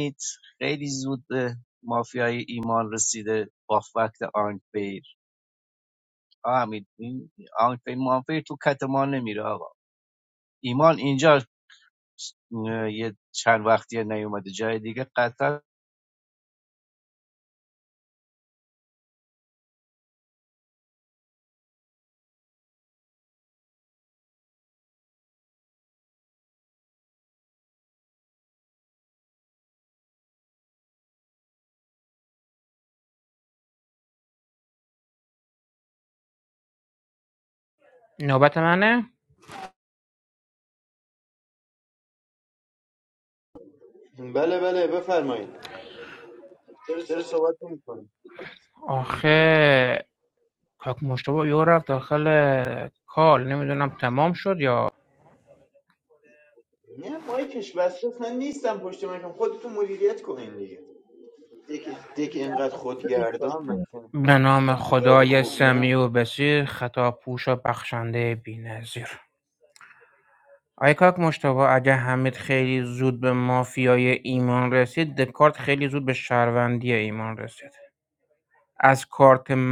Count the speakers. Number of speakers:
3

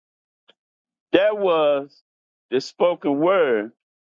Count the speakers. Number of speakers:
1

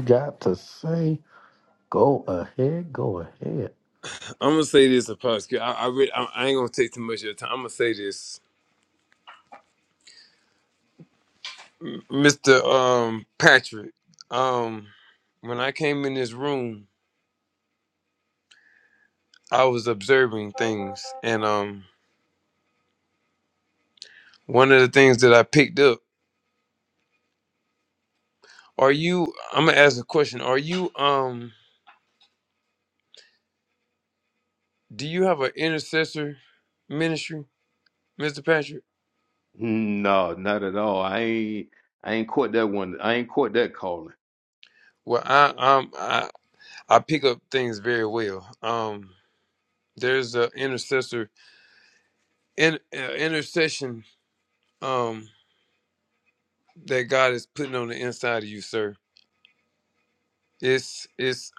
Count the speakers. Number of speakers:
3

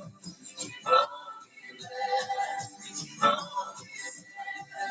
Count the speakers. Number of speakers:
0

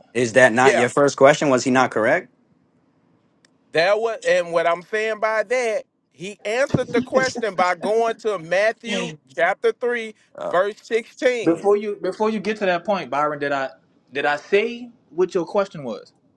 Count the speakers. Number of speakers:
3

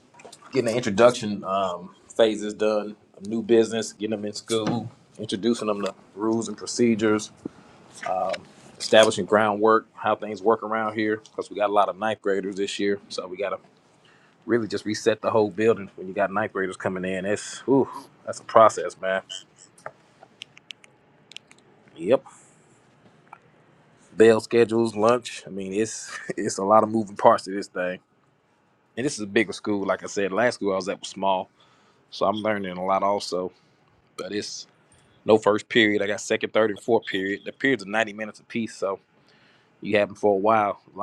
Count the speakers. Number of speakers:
1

